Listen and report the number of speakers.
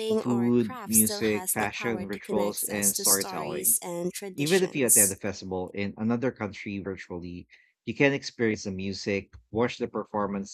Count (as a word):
two